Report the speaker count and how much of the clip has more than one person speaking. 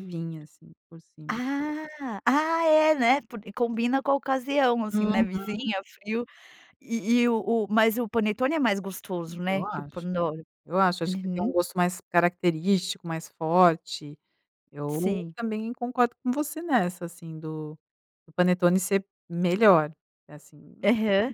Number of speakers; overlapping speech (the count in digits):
2, about 10%